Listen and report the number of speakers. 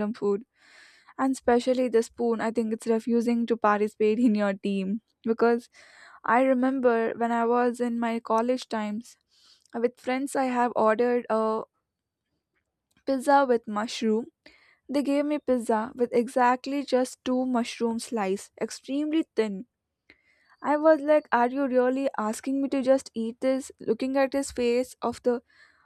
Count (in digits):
1